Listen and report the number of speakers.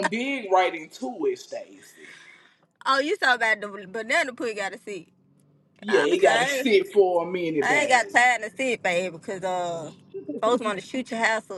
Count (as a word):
two